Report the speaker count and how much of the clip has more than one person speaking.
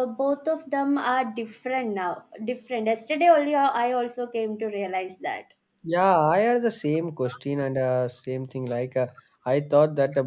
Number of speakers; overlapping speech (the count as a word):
two, no overlap